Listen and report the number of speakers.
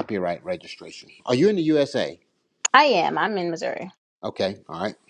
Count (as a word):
two